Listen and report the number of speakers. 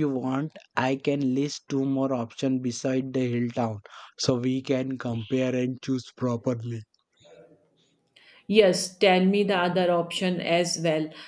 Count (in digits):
2